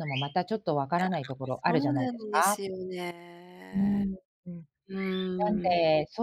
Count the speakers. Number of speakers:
2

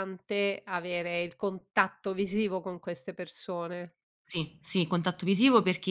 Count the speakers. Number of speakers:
2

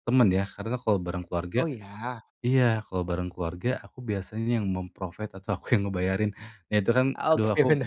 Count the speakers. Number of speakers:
2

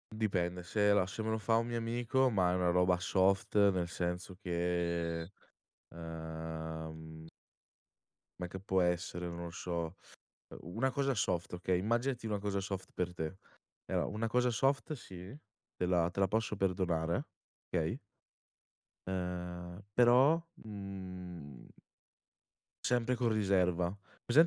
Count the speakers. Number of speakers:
1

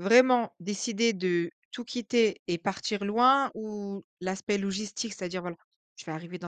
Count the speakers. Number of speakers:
1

